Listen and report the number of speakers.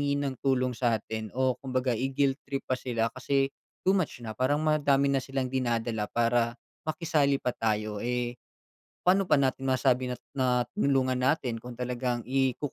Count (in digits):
1